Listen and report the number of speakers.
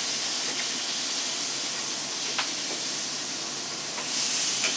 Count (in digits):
0